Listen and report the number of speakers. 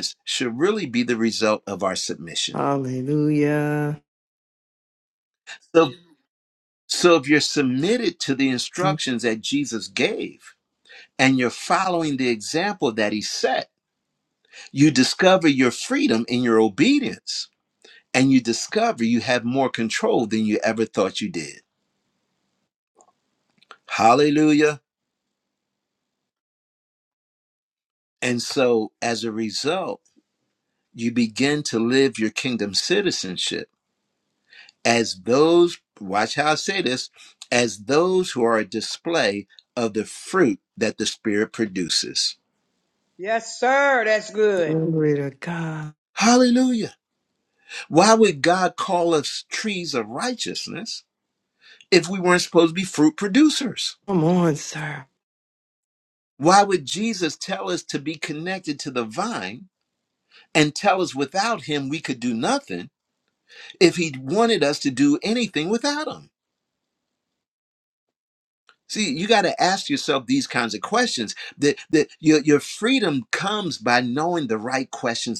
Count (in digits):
3